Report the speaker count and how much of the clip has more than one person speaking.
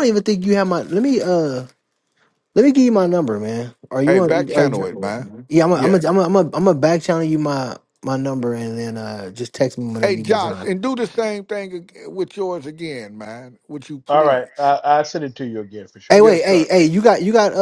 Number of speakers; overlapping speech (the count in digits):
3, about 17%